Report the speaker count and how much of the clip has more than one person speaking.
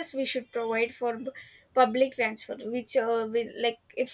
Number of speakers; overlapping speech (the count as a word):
one, no overlap